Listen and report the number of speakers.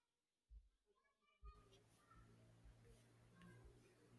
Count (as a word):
zero